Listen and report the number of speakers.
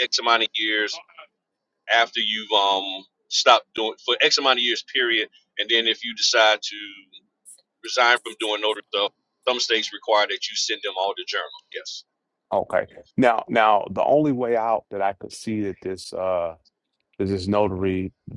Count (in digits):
2